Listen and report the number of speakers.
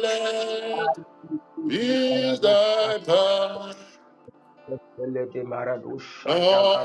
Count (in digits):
2